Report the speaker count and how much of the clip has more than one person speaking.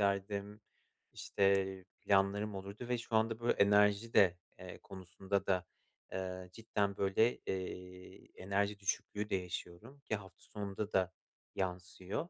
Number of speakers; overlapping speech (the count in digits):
1, no overlap